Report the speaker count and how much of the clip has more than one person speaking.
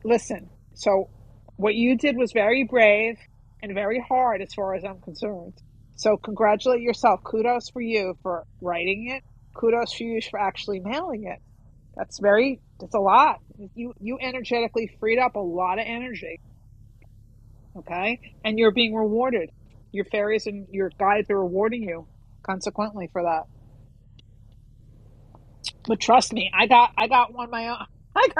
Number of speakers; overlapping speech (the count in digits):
1, no overlap